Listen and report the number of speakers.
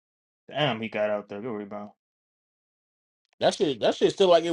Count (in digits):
2